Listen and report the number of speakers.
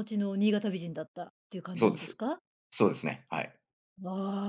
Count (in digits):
2